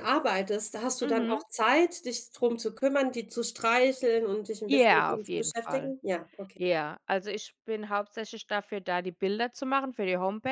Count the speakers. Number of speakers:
2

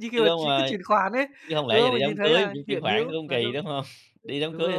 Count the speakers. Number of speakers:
2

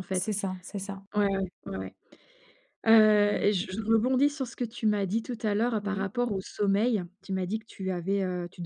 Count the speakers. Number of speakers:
2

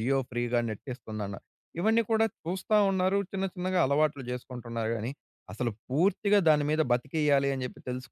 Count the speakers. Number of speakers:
1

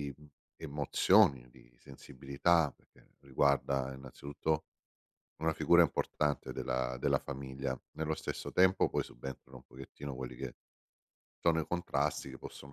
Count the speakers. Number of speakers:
1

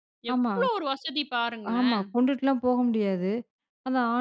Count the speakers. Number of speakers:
2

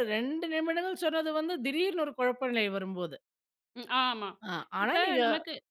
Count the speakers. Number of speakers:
2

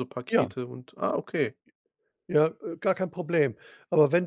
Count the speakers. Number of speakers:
2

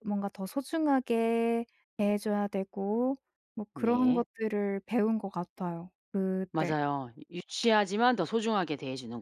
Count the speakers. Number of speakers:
2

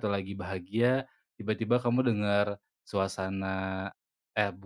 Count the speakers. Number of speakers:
1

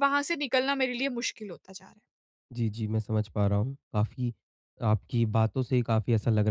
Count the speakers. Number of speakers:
2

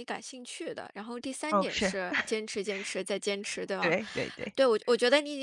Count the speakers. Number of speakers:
2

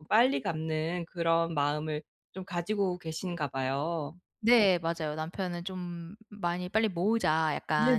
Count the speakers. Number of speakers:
2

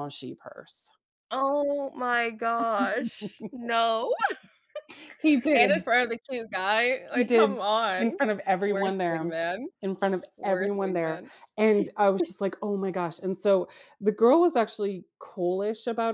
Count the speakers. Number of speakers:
2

